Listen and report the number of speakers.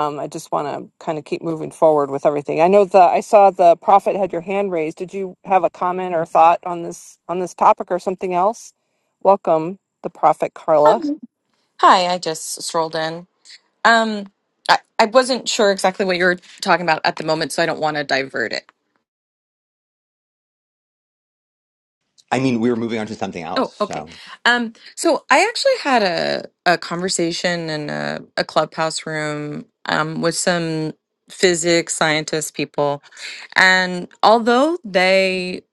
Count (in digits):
3